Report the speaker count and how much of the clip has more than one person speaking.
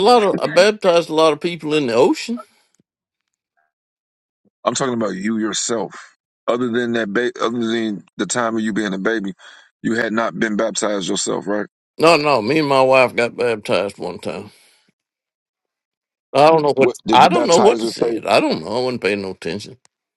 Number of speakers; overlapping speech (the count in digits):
2, about 7%